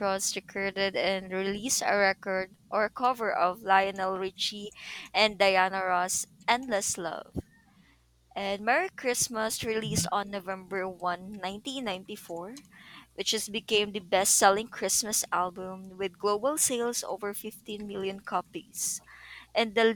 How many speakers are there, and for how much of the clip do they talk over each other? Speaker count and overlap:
1, no overlap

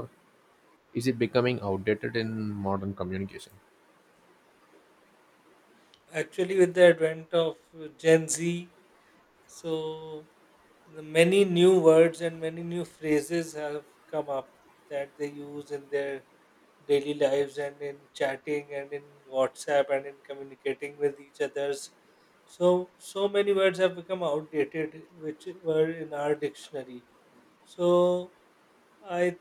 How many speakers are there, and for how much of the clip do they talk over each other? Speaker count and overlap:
2, no overlap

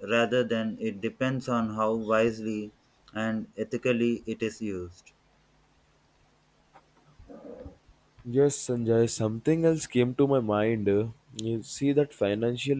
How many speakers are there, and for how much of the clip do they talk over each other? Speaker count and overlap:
2, no overlap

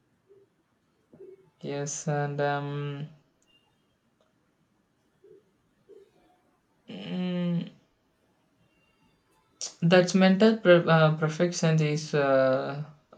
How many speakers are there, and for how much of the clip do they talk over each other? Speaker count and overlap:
1, no overlap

